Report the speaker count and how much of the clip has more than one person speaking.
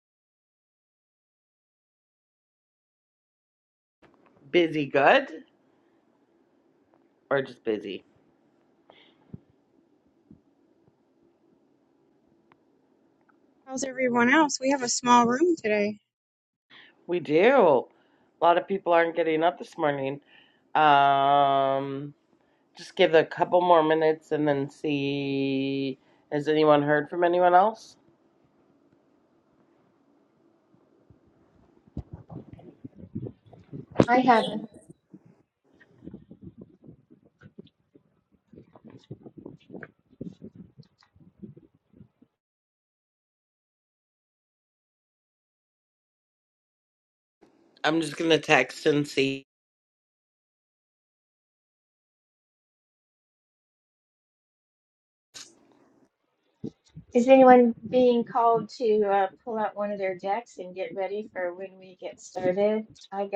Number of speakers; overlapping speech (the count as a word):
three, no overlap